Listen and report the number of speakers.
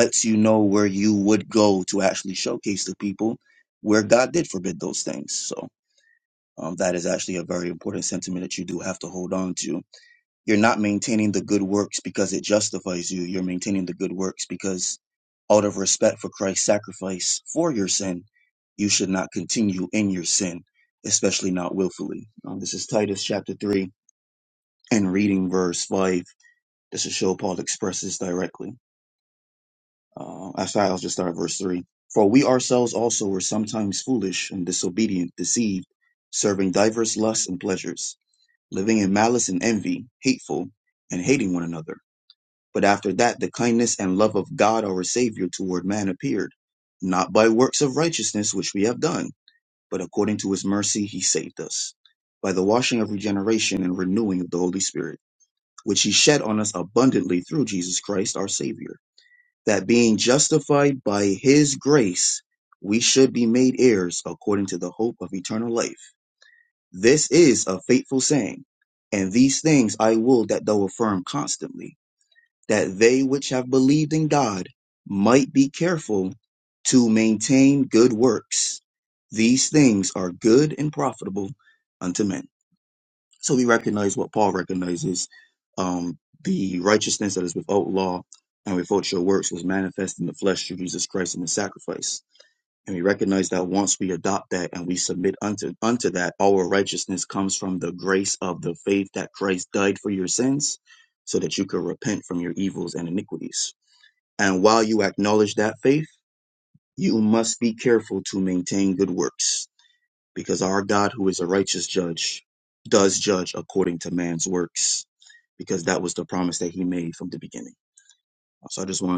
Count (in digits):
1